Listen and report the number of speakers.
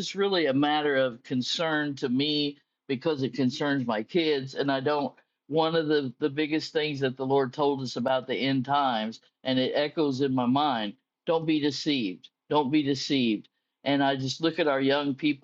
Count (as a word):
one